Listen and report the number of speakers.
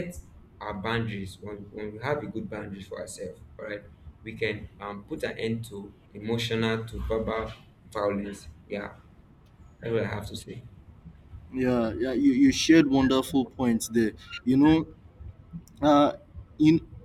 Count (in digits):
2